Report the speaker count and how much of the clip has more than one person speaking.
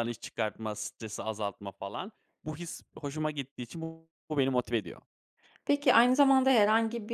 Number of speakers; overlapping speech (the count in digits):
2, no overlap